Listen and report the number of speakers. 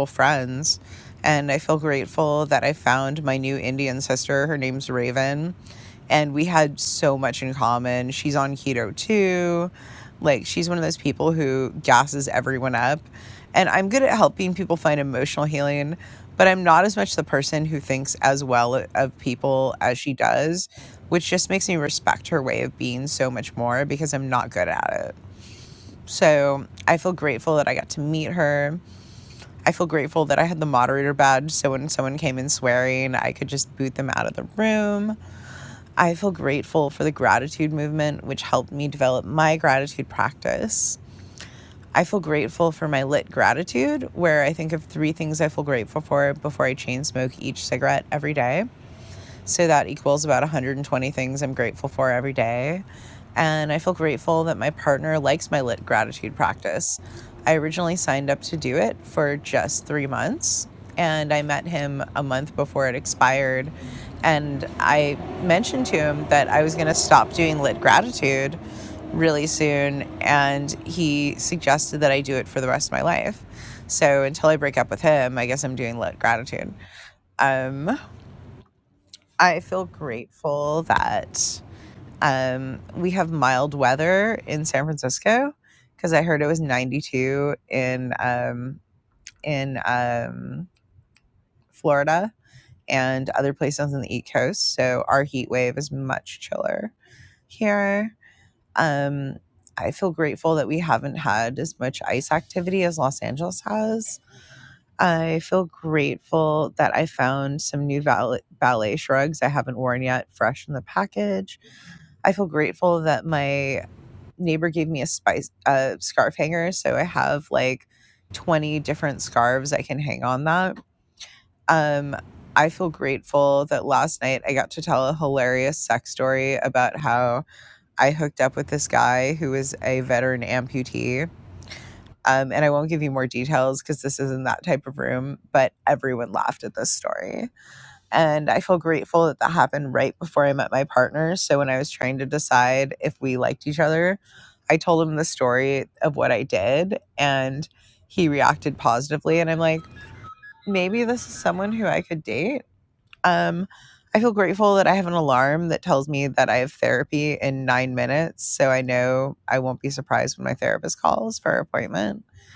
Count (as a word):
one